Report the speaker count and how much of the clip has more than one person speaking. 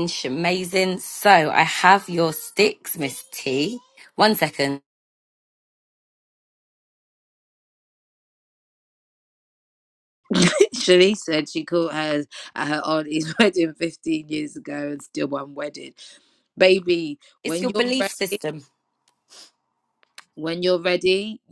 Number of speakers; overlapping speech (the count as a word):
two, about 3%